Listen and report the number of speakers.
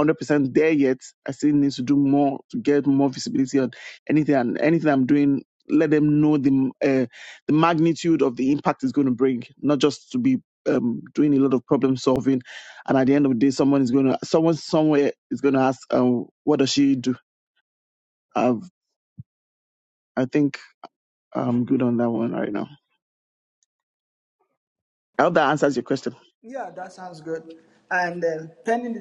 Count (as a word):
two